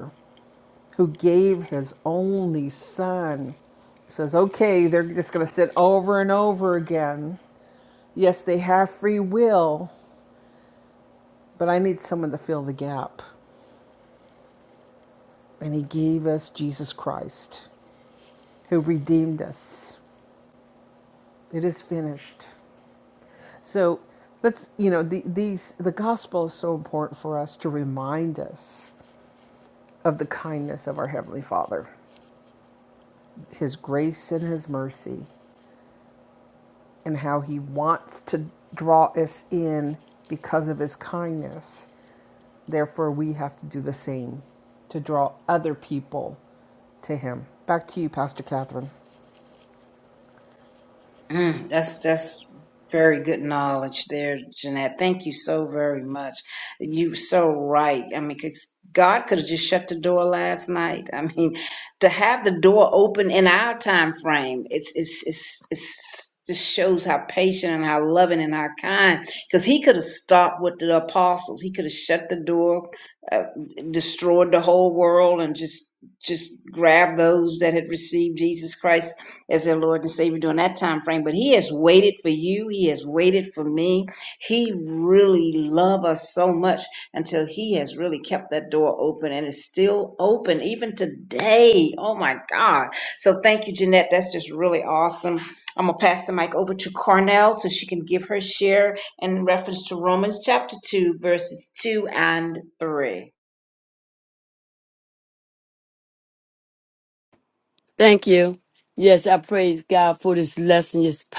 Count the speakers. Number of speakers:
3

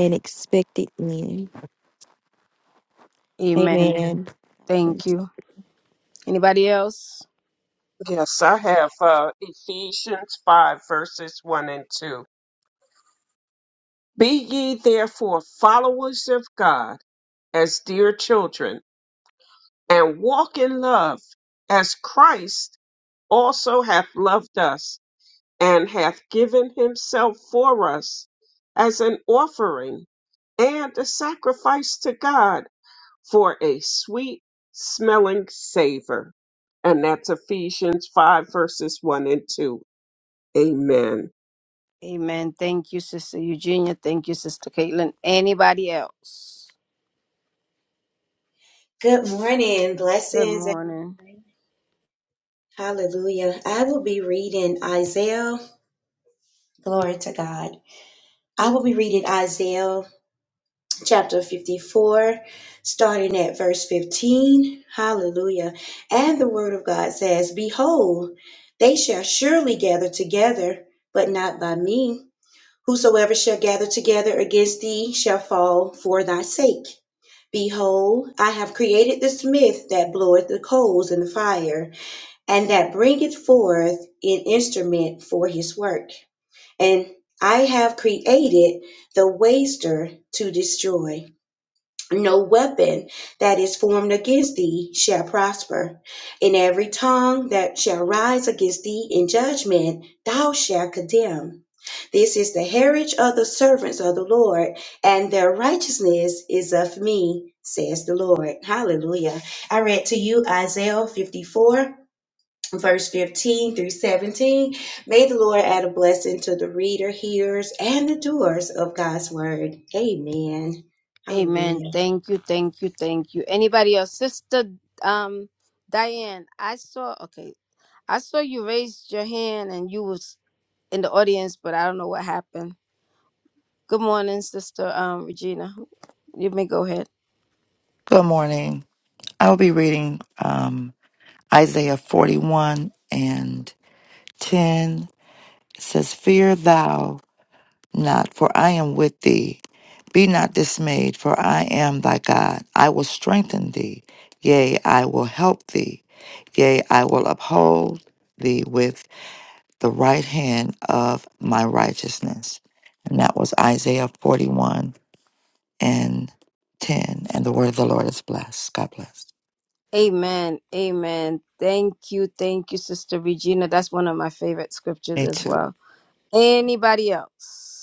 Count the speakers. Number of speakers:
5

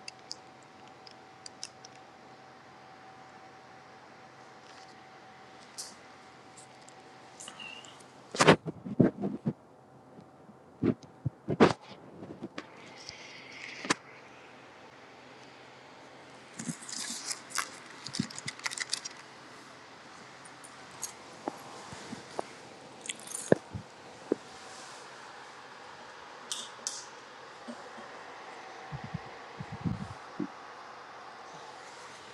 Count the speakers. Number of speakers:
0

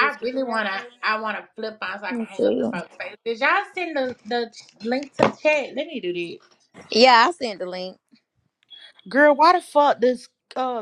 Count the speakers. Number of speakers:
3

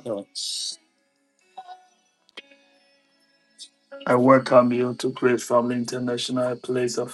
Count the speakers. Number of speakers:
1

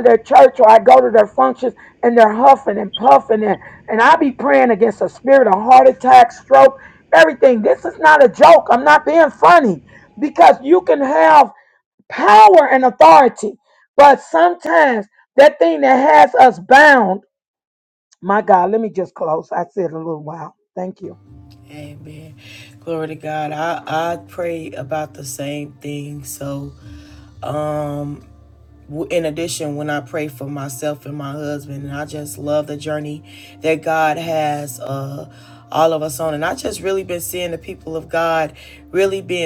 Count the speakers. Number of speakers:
2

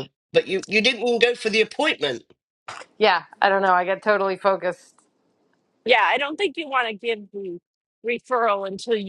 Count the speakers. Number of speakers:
3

